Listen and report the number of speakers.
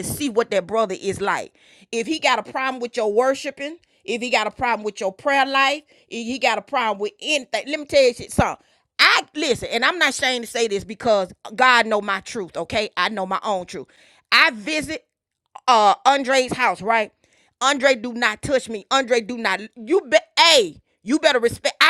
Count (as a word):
one